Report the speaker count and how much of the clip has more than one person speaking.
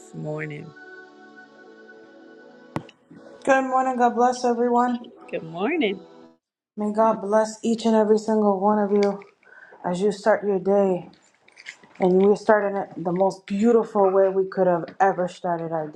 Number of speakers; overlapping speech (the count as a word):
two, no overlap